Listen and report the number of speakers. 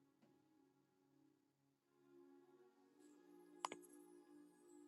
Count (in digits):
0